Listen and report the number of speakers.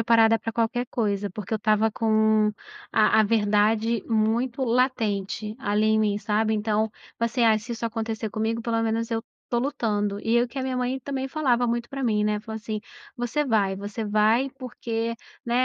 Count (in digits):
1